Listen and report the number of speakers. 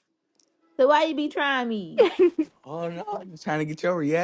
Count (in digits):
2